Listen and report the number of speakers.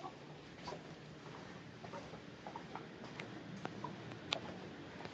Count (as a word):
zero